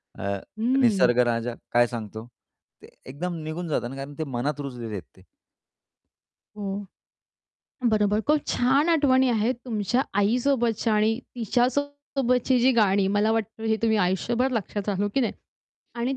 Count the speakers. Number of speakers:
2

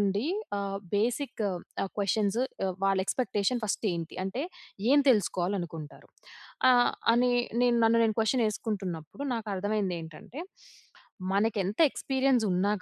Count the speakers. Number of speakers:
1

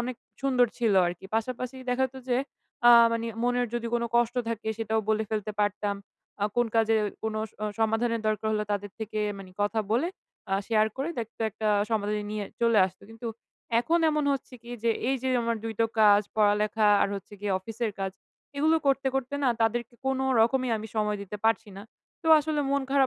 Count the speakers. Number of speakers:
1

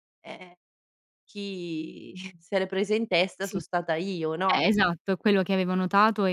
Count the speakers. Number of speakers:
2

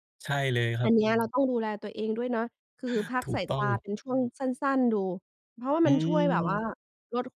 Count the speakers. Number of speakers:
2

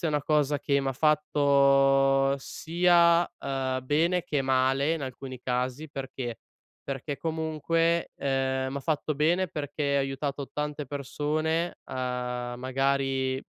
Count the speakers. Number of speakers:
1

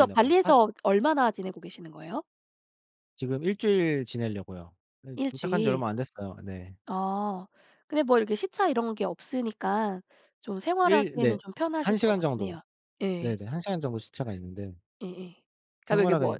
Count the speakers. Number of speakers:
2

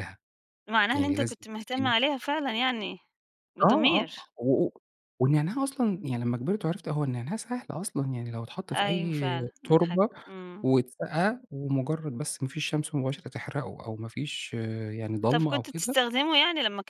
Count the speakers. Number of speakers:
2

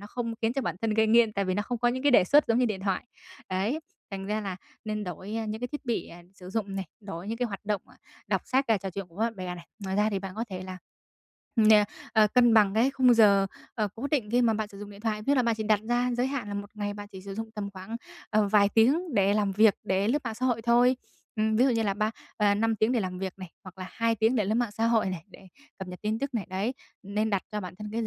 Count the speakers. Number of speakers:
1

